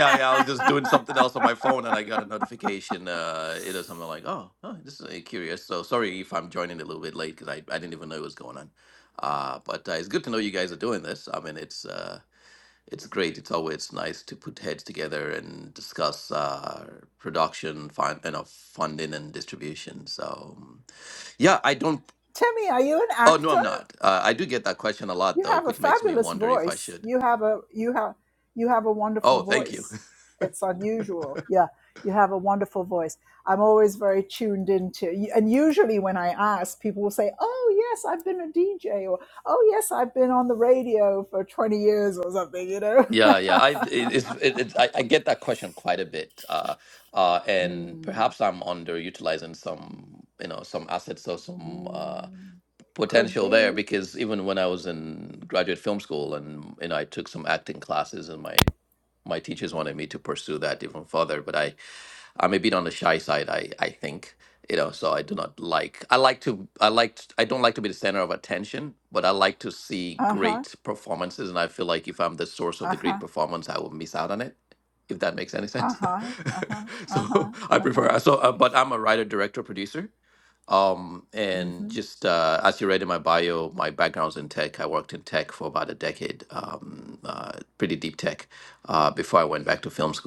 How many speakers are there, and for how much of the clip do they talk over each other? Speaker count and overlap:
two, about 8%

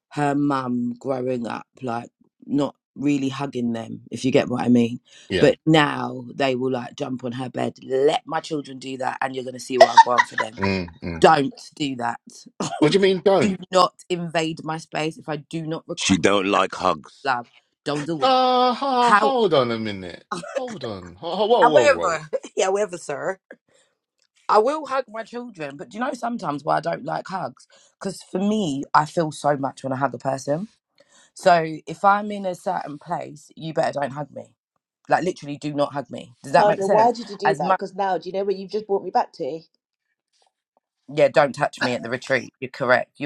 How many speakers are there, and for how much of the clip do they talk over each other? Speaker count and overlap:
four, about 6%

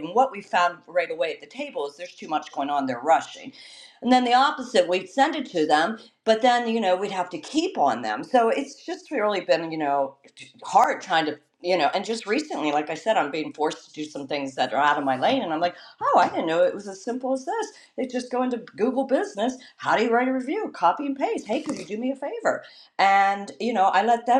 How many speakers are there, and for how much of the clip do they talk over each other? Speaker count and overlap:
one, no overlap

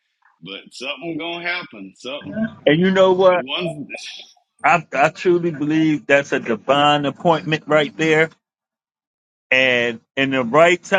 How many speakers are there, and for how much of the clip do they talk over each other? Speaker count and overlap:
two, about 1%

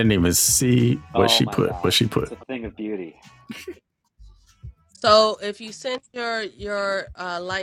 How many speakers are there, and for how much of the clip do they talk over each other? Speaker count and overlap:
three, about 15%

